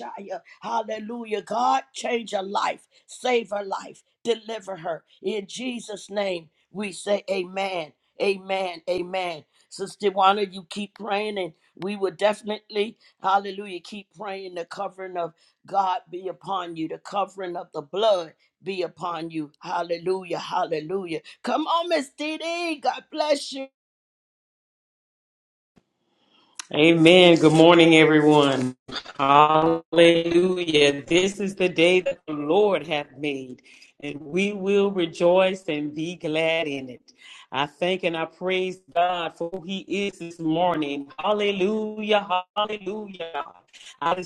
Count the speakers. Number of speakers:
two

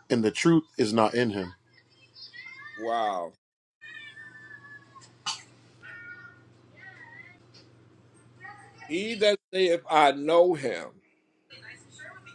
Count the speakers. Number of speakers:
two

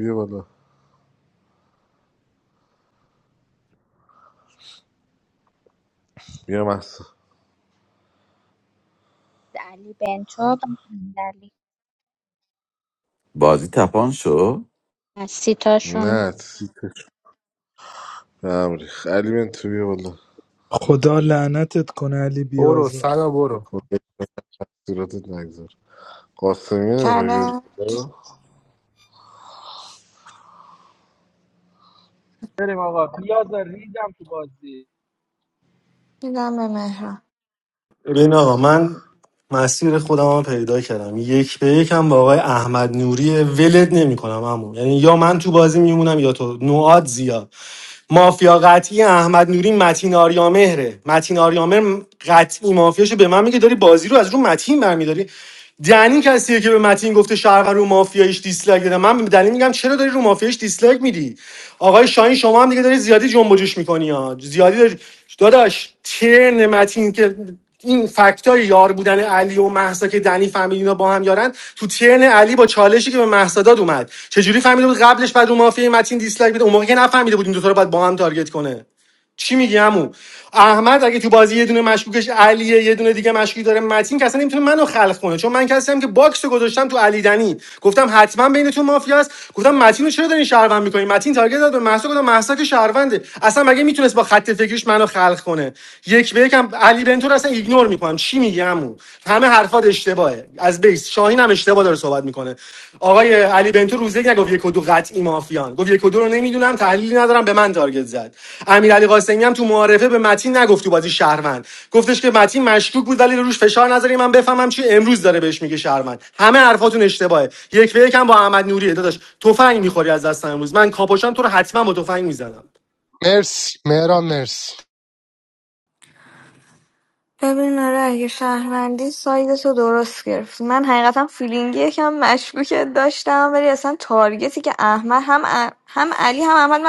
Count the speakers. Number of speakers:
eight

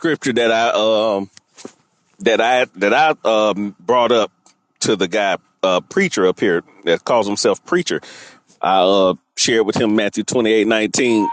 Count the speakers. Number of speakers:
one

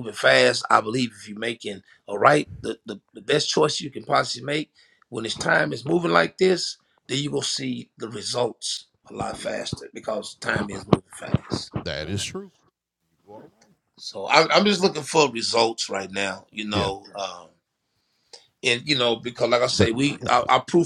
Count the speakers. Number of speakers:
two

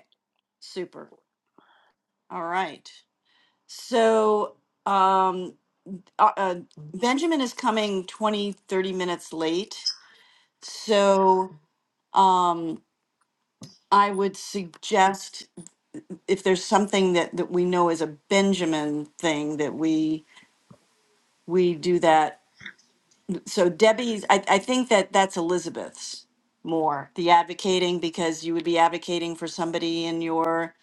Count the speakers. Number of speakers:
one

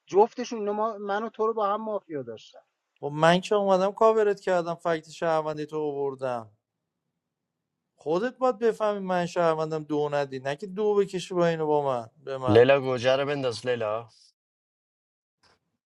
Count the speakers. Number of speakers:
three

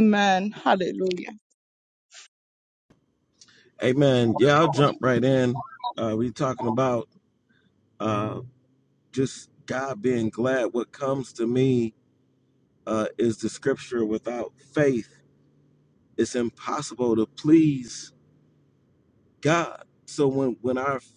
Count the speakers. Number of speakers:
two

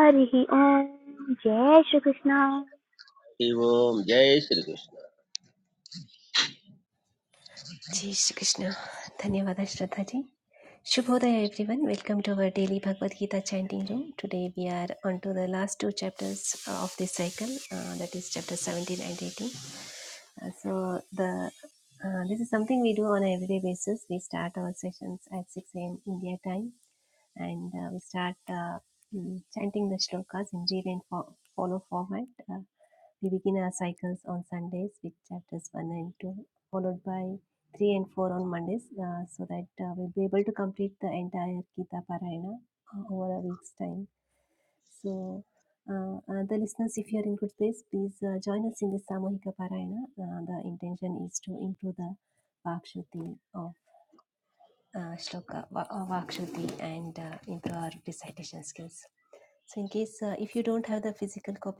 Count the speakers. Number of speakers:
three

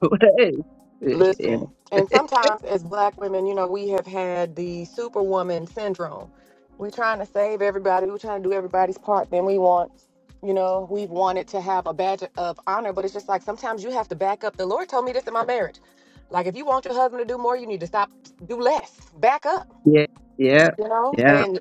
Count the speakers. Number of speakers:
two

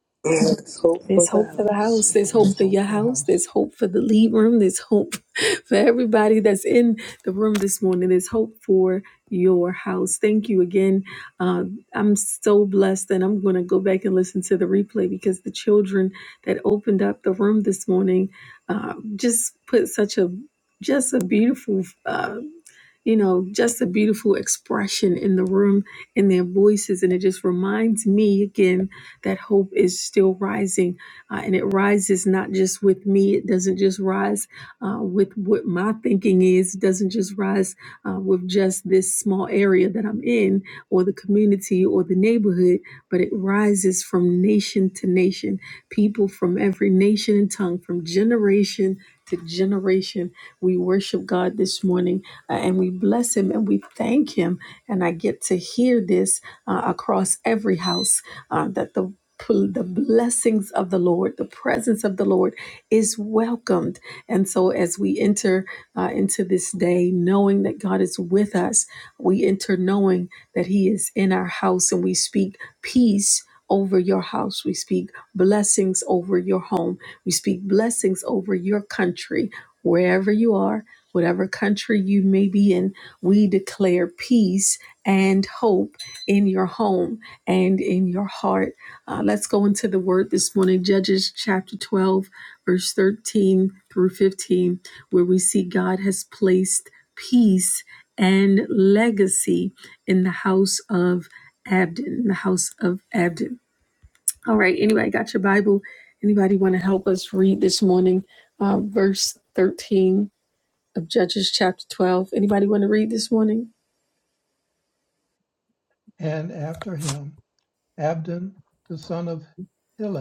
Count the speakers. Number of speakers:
three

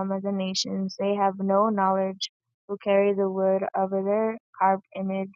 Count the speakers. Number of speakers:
one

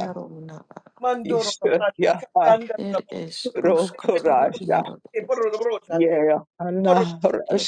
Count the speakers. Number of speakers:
three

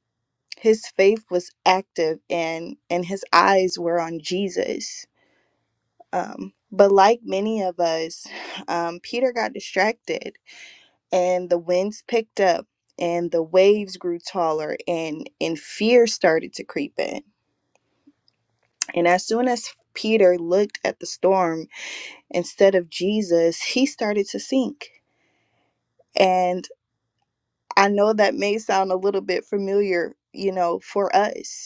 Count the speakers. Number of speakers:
one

